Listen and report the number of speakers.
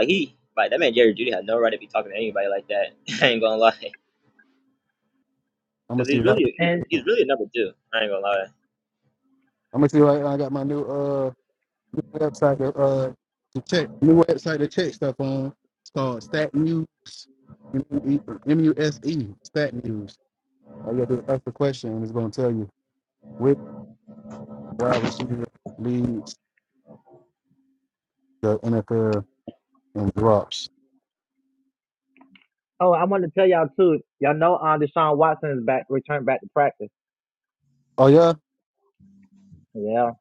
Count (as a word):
three